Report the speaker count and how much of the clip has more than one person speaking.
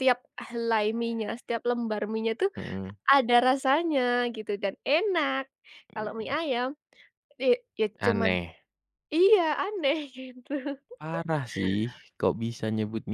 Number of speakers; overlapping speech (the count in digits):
2, about 3%